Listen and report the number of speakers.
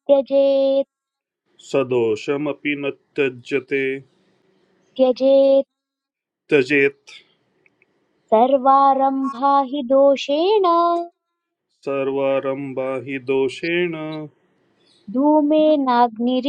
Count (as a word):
two